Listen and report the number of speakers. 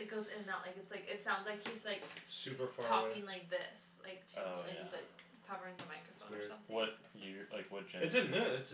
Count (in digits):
3